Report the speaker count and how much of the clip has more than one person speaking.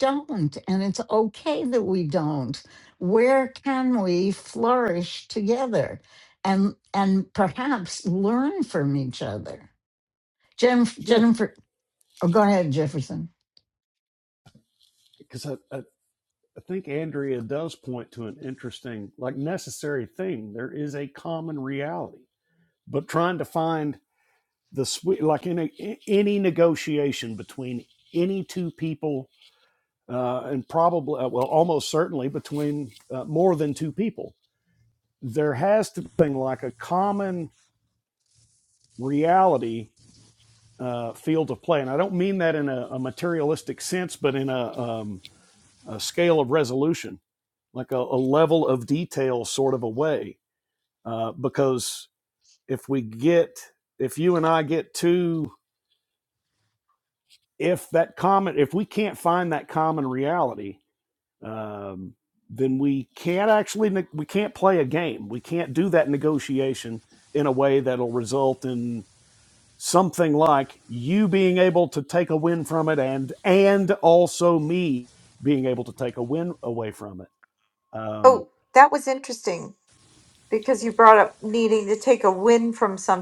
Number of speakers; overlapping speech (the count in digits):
3, under 1%